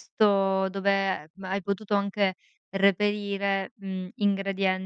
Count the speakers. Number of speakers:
1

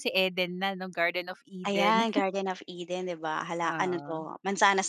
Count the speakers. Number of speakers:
2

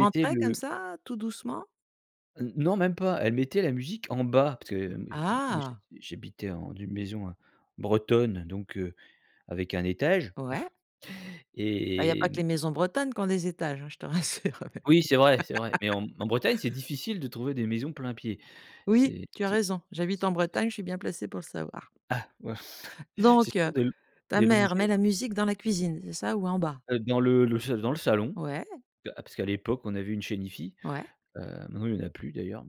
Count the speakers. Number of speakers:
2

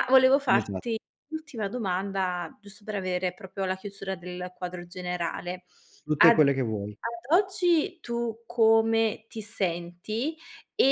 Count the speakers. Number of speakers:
2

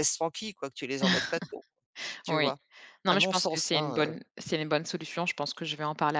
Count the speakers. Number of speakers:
2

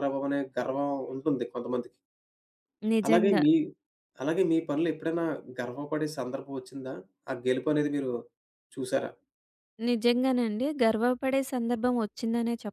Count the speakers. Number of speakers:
2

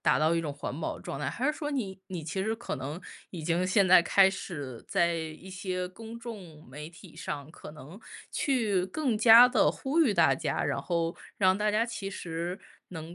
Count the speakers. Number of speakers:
1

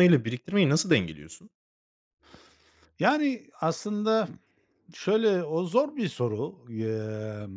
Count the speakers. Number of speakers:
2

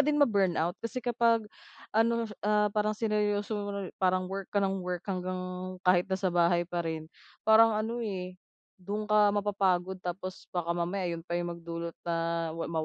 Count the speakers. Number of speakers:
1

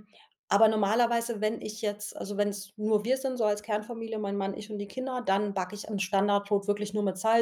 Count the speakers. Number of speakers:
1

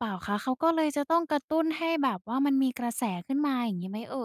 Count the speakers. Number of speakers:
1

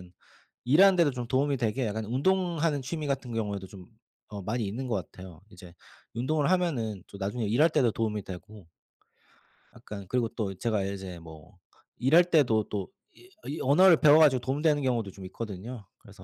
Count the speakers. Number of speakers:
1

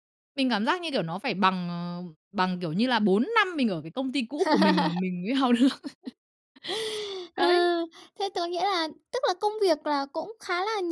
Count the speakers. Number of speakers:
2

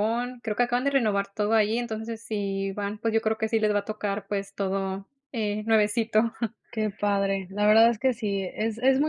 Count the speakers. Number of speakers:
2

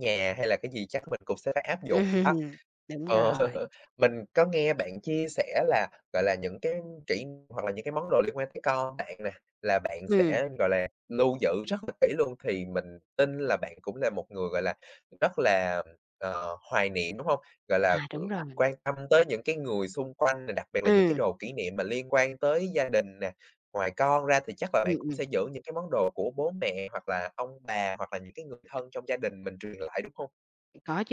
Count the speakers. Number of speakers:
2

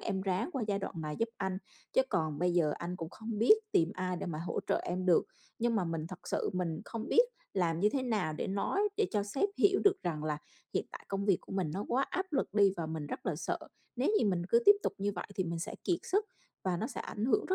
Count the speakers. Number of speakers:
1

